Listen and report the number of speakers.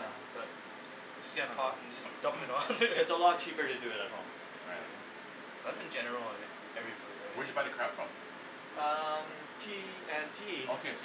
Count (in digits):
3